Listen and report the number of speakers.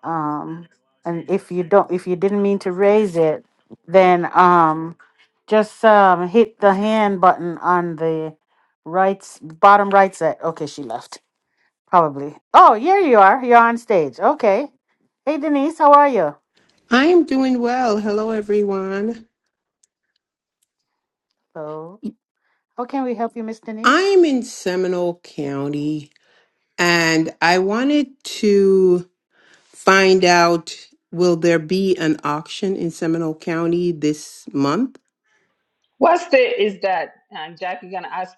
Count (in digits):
3